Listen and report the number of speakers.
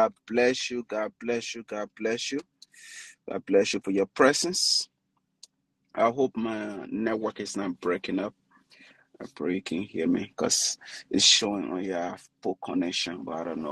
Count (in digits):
1